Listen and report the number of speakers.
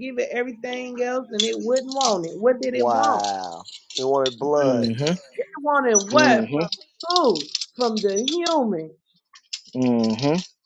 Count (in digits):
3